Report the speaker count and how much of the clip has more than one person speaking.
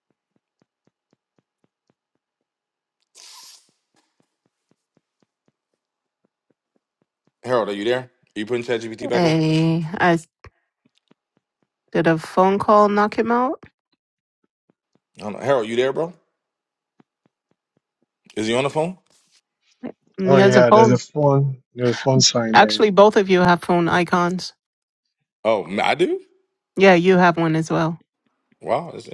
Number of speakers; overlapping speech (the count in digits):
3, about 4%